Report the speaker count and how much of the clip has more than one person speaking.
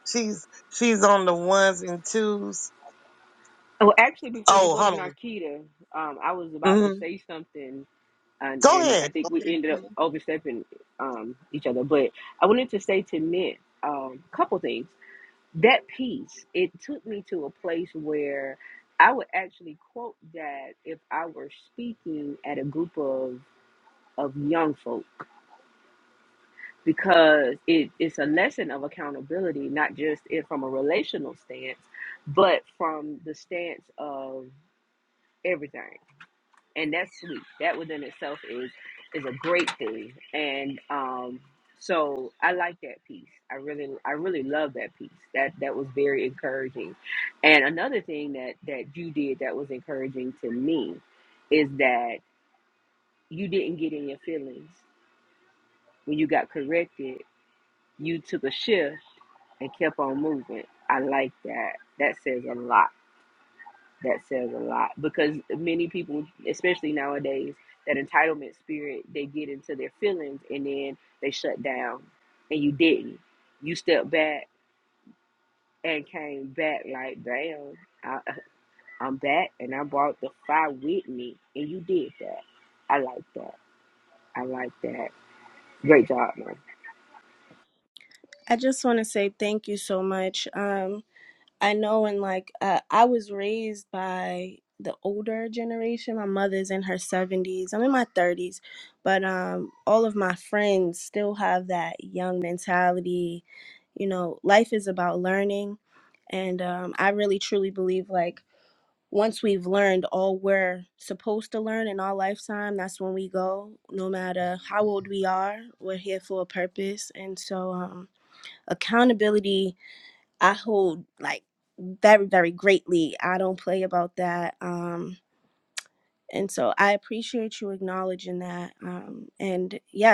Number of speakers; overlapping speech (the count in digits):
3, about 1%